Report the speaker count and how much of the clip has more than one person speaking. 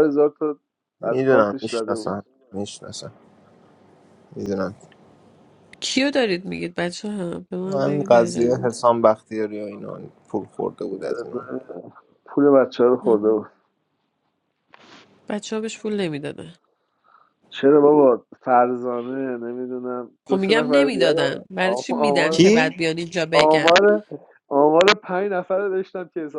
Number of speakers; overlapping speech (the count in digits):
3, about 19%